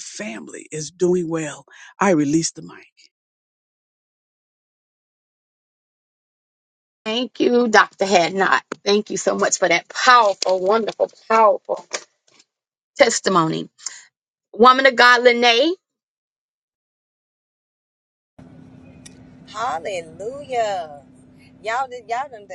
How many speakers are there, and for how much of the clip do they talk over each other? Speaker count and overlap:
three, no overlap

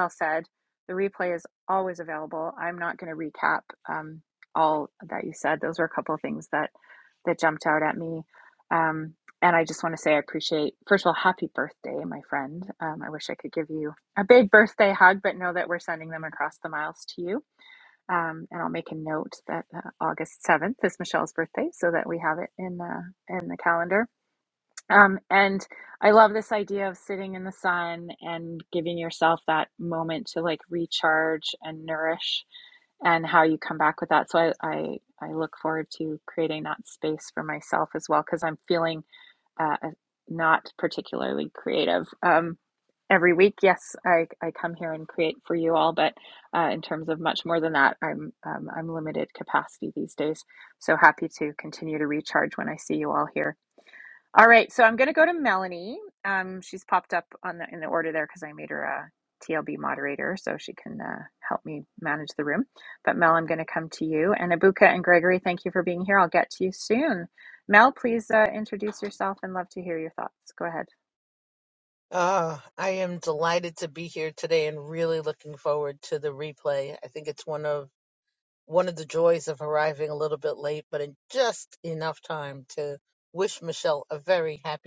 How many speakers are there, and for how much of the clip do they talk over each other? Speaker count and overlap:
two, no overlap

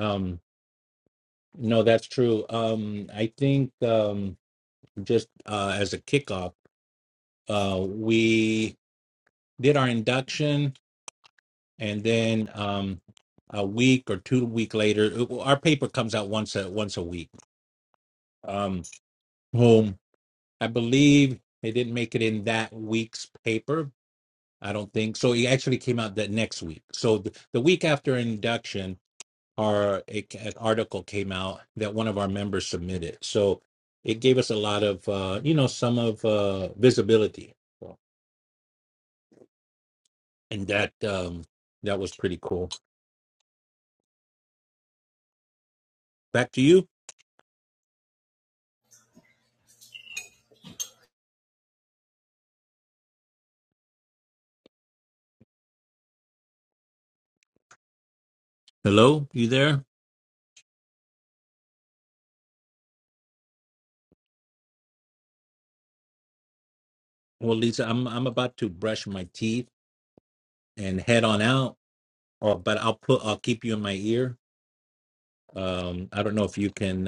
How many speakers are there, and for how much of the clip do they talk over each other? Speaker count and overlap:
one, no overlap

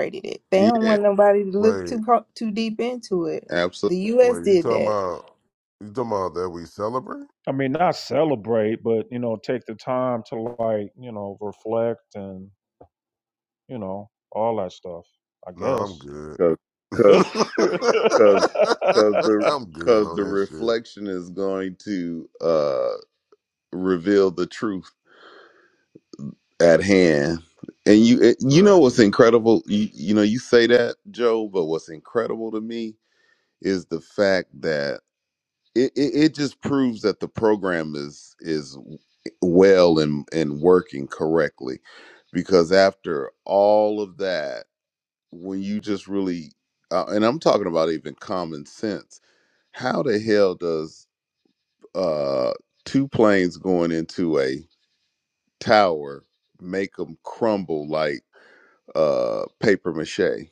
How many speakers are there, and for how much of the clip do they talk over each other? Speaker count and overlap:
four, about 5%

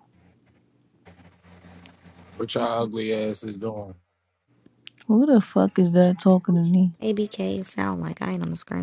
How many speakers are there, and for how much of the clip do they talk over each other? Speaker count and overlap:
three, no overlap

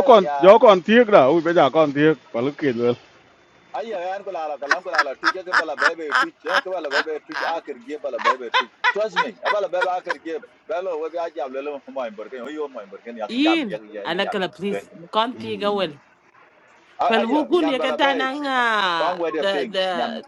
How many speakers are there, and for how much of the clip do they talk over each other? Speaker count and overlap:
three, about 22%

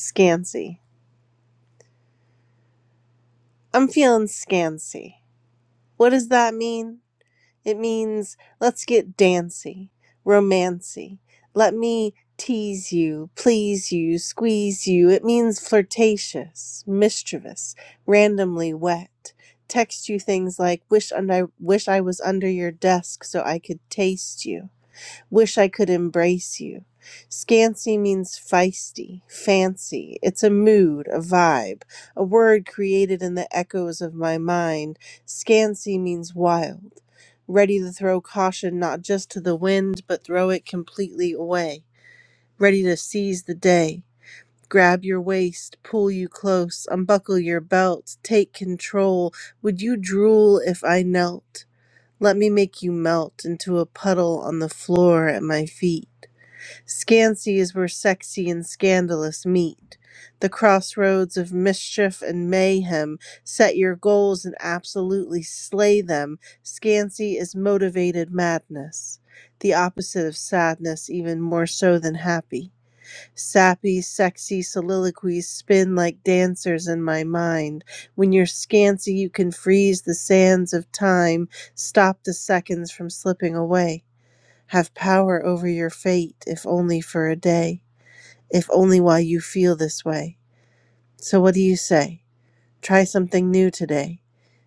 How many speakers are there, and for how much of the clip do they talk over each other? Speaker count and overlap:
one, no overlap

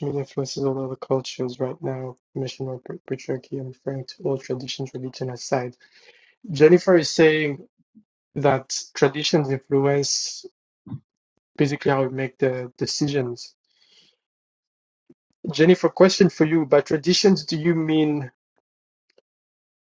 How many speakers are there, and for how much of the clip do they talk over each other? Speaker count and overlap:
one, no overlap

